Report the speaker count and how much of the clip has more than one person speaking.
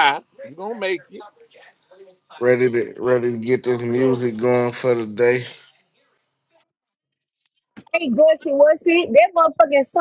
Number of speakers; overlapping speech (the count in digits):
3, about 2%